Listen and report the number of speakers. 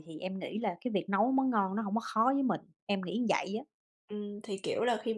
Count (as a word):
two